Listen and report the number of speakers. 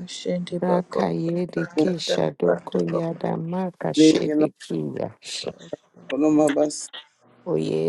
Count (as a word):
three